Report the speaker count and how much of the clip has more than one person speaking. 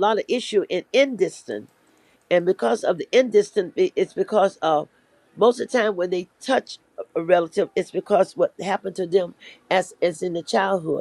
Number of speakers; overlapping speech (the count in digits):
1, no overlap